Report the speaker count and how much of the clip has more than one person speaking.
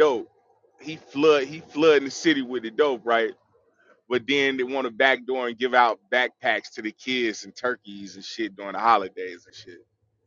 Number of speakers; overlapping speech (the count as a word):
one, no overlap